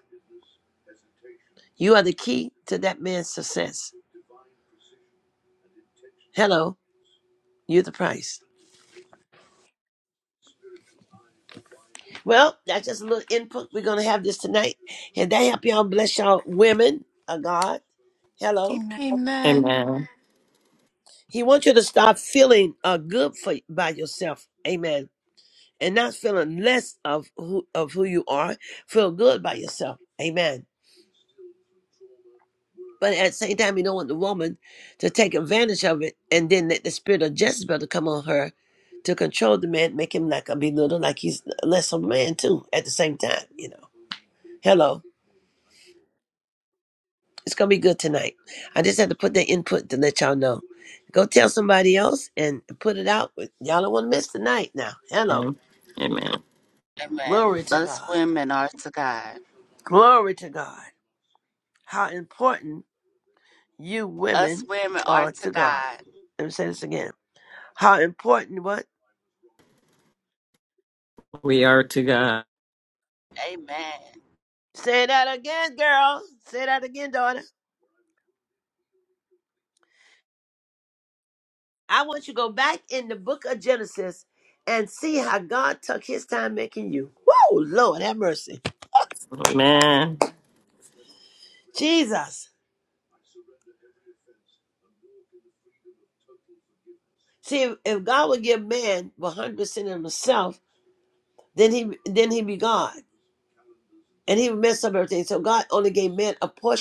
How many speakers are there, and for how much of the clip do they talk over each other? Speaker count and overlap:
4, about 2%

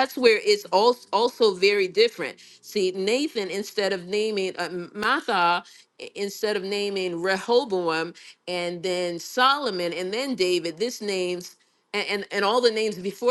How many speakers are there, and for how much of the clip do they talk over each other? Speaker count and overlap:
1, no overlap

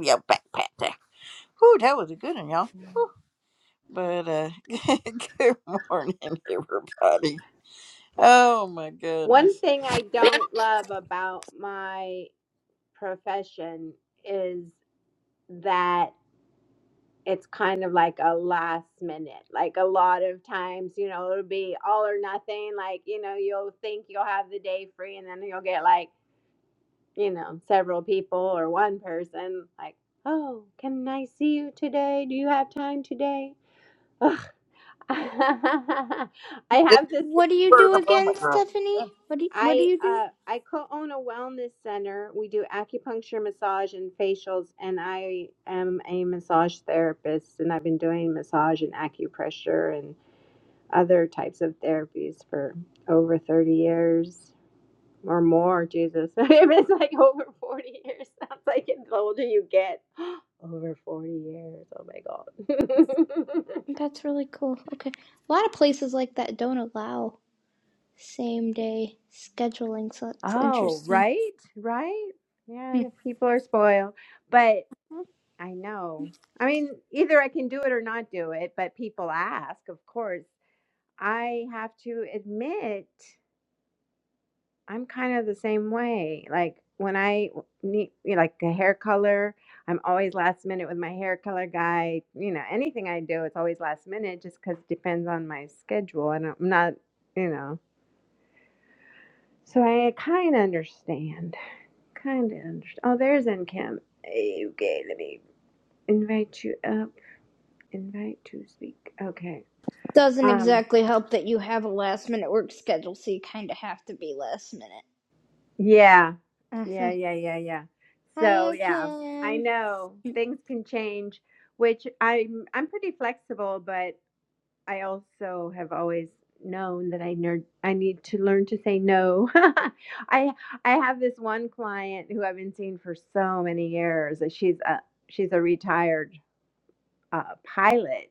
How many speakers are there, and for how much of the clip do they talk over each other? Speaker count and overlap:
3, about 3%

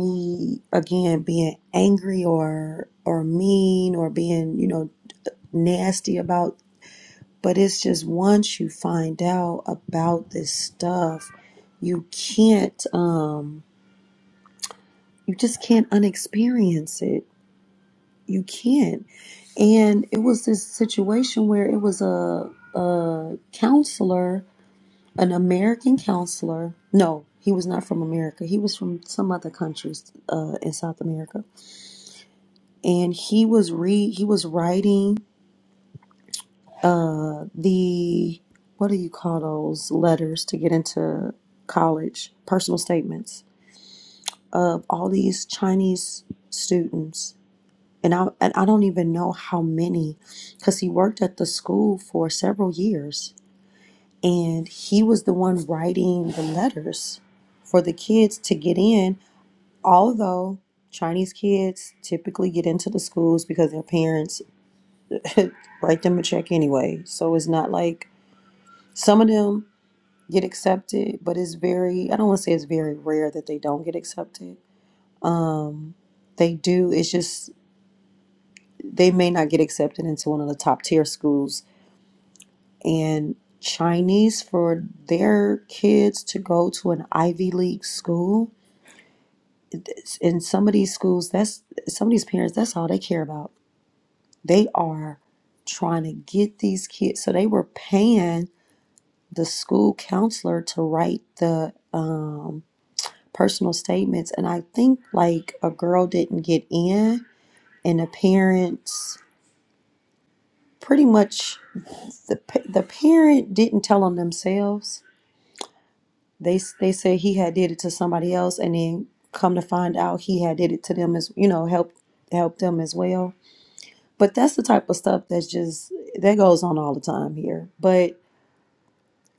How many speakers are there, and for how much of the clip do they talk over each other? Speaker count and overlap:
1, no overlap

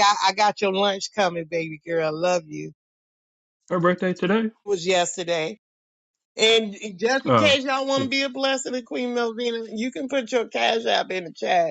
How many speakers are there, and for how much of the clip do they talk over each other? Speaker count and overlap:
2, about 5%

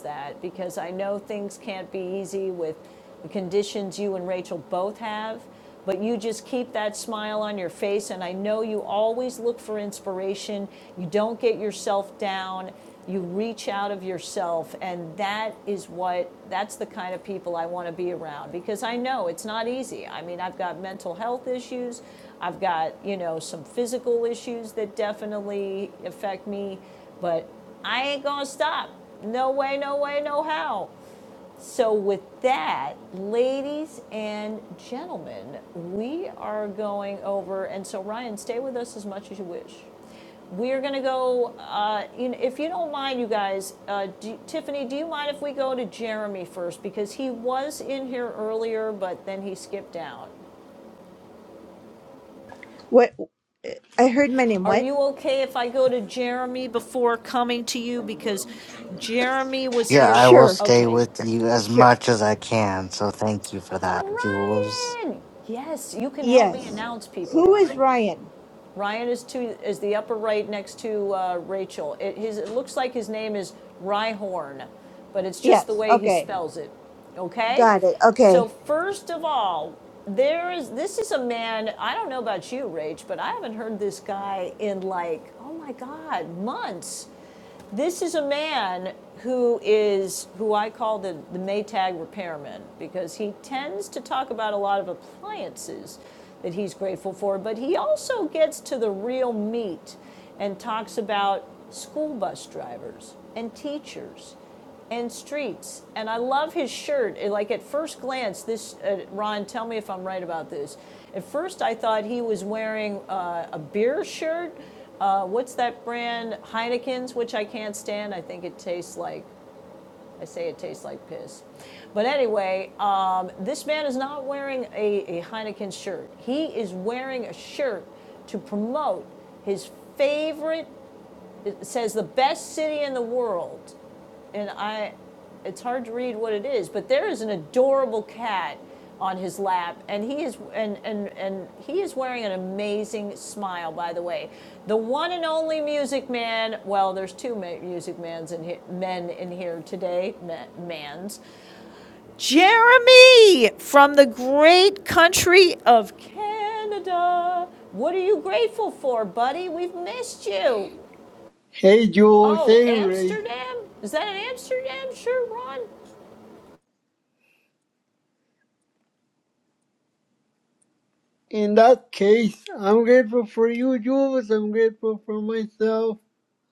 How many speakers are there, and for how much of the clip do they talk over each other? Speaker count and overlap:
4, about 3%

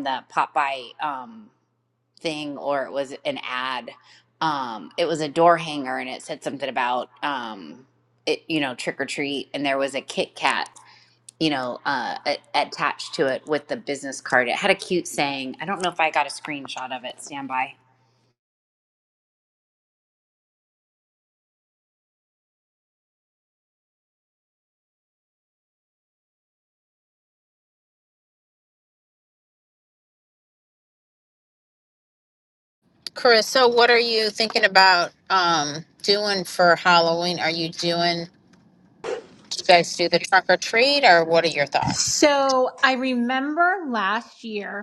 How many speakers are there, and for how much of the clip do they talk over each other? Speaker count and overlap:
3, under 1%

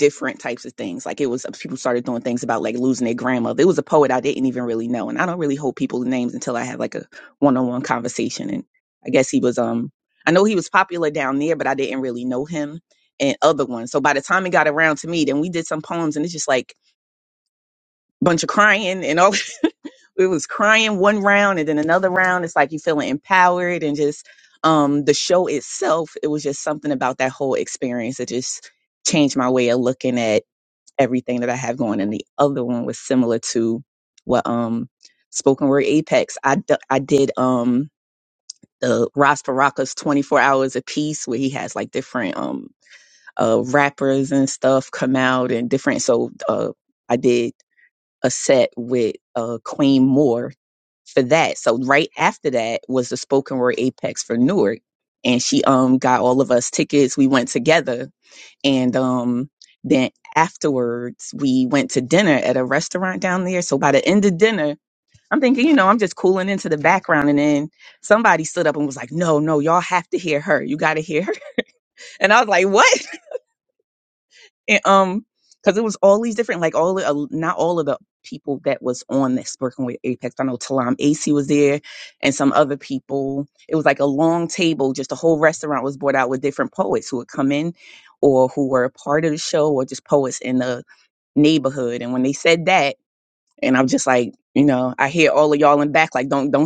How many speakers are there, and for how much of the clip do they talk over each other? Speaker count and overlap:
1, no overlap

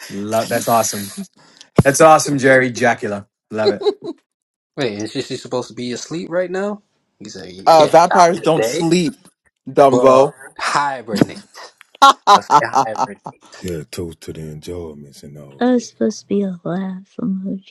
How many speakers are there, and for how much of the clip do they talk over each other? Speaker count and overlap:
5, about 10%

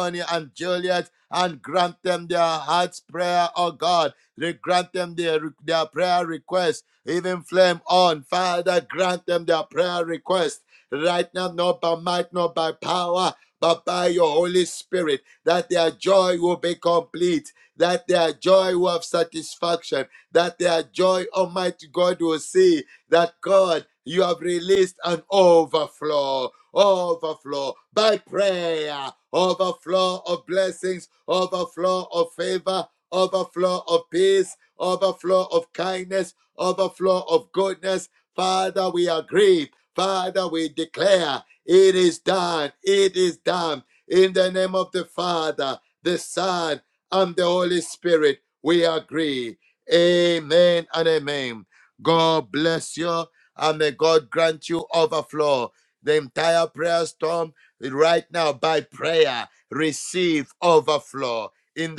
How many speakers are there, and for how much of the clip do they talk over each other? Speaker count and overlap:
1, no overlap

